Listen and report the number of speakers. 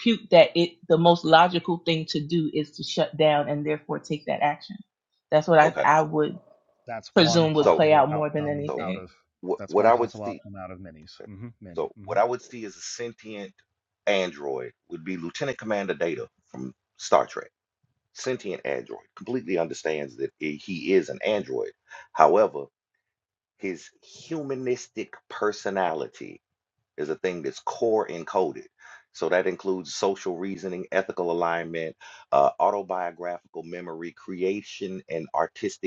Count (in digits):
3